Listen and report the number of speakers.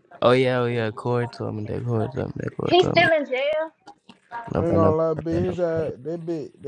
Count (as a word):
three